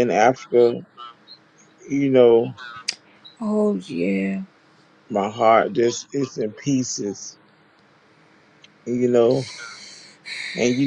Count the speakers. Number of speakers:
2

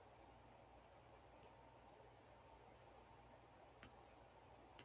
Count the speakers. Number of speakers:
0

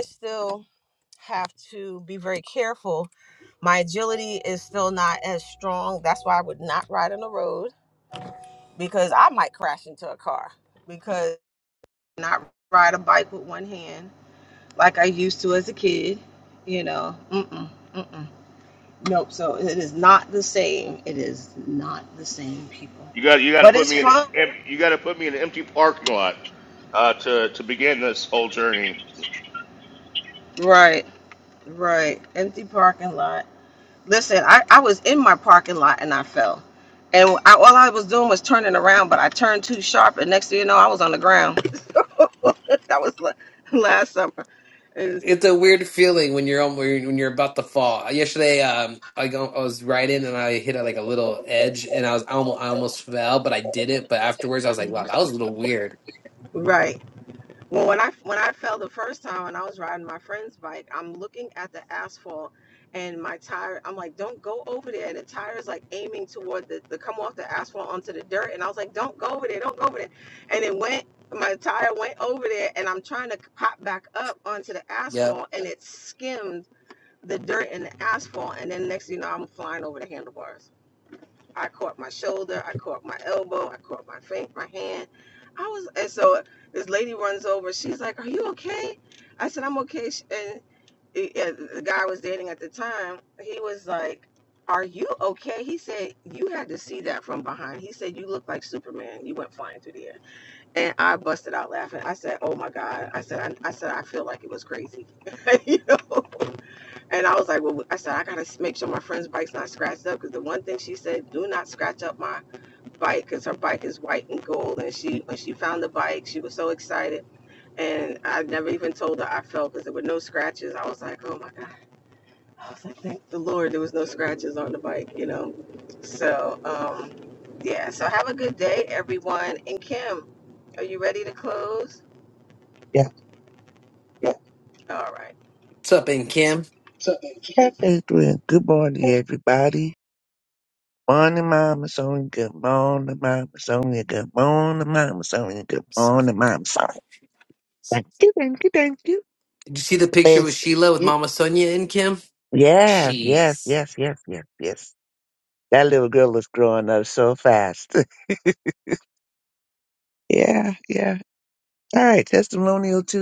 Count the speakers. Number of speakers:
4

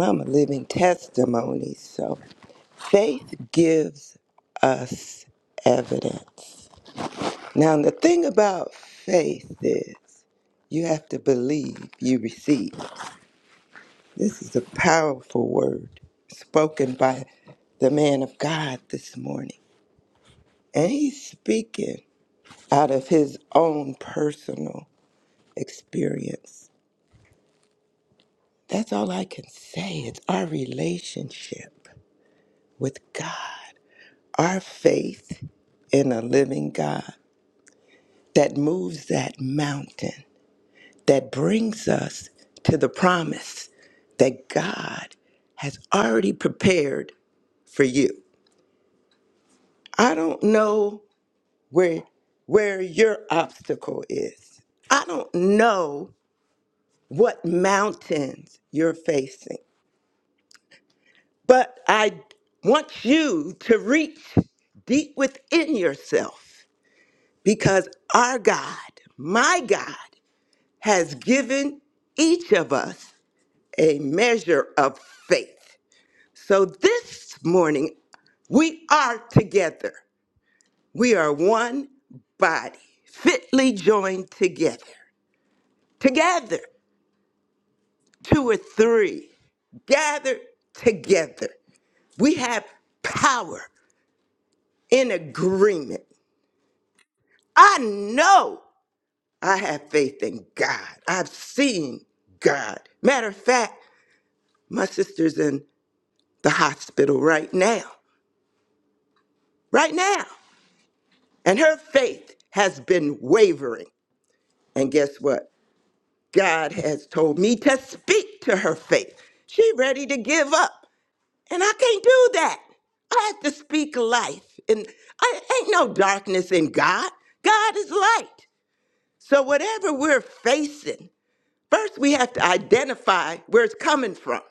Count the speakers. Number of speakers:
1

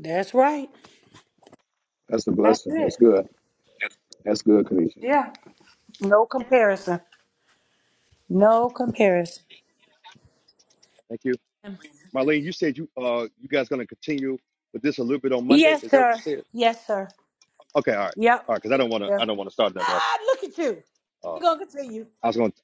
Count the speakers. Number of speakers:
3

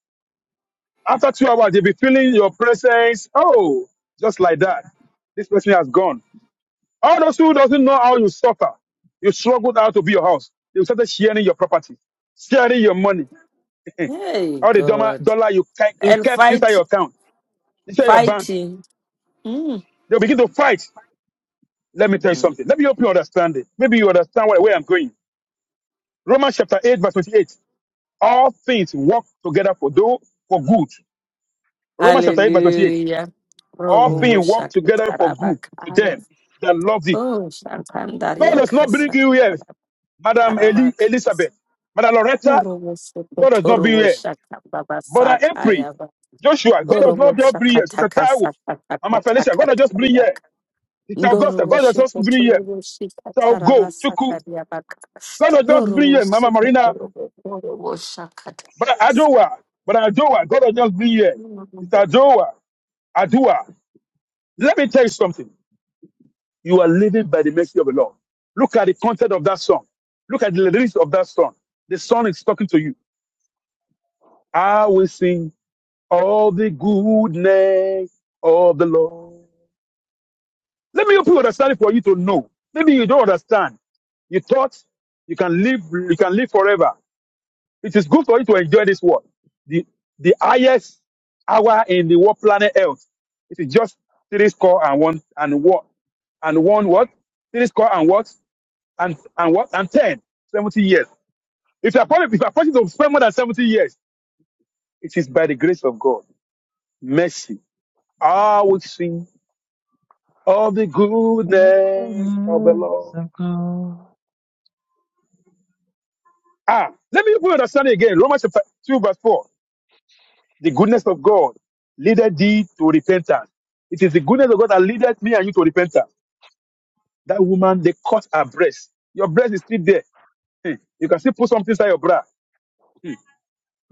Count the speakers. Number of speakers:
3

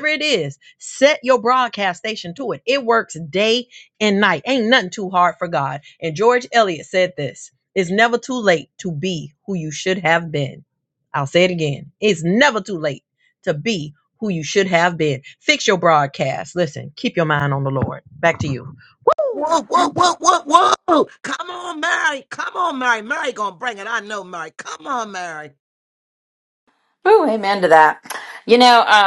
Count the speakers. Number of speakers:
3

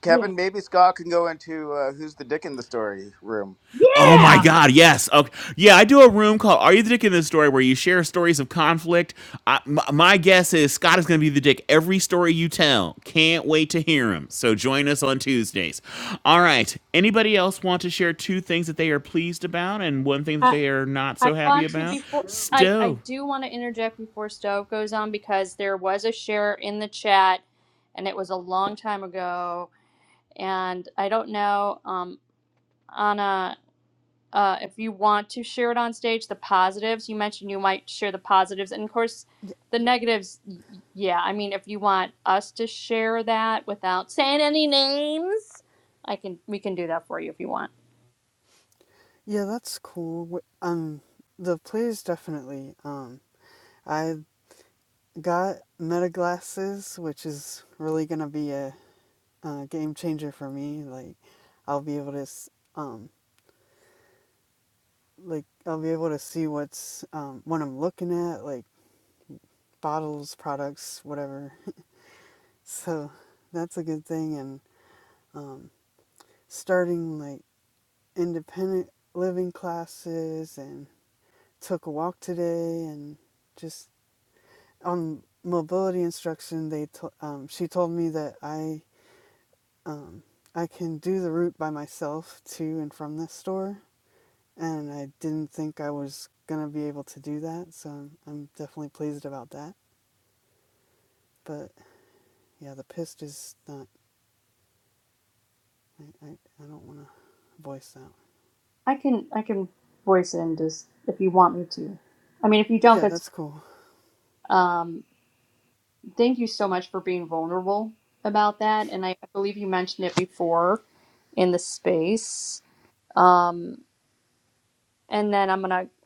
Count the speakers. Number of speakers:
4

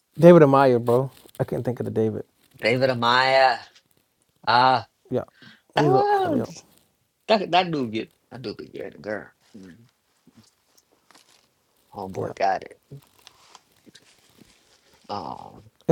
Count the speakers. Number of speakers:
2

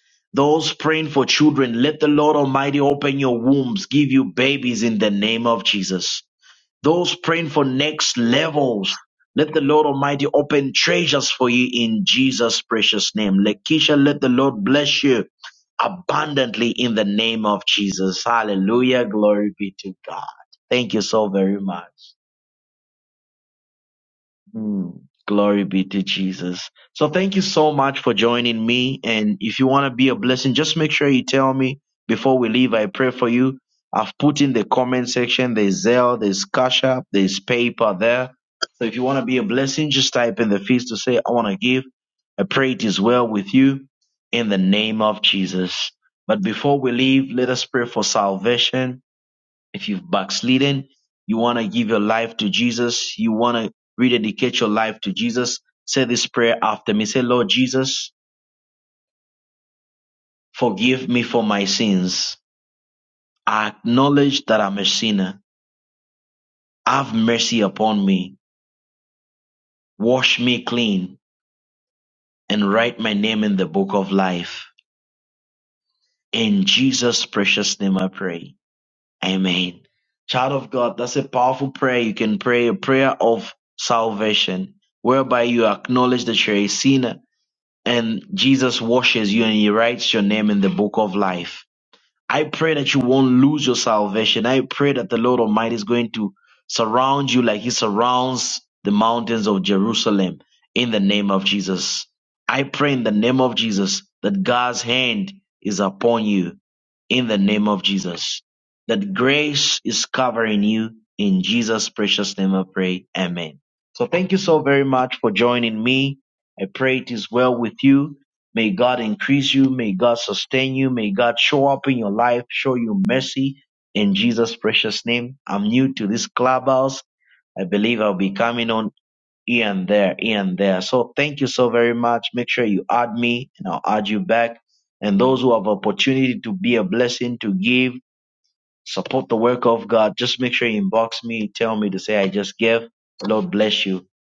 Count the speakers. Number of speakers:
1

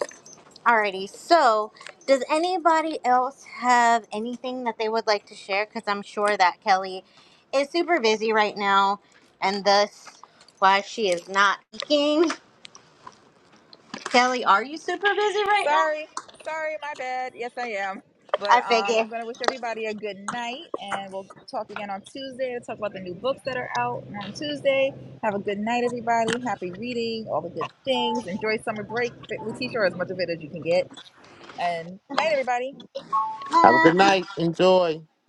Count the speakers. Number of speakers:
3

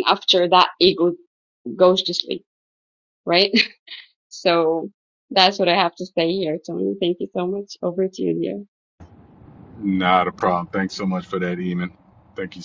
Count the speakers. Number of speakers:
2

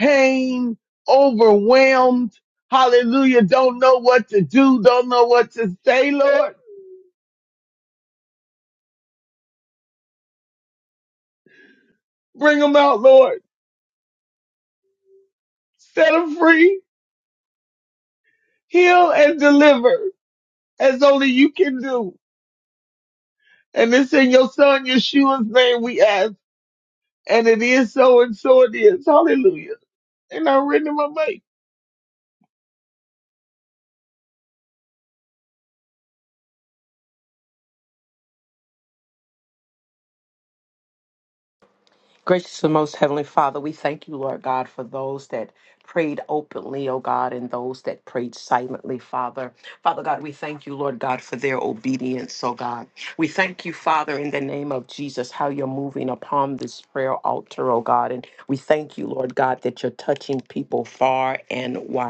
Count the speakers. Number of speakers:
2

